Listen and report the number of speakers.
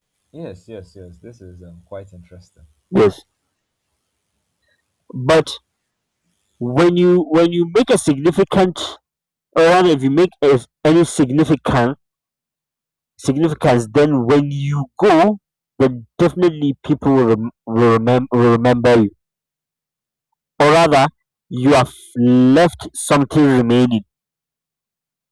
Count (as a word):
two